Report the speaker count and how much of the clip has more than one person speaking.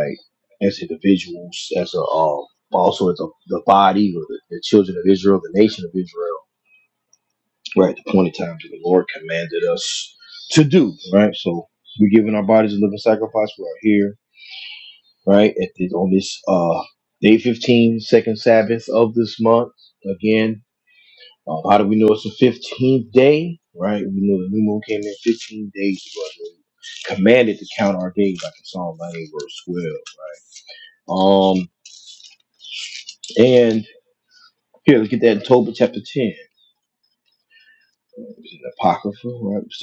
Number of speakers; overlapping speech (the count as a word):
one, no overlap